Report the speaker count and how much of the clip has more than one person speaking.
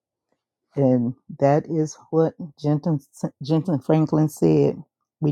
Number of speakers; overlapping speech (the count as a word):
one, no overlap